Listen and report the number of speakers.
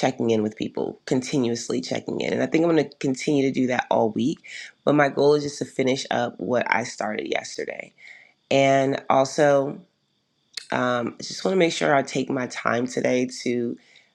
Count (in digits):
1